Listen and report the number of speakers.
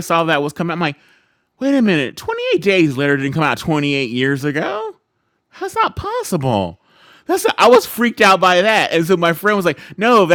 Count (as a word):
one